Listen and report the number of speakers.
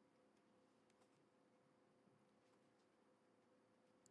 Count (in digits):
0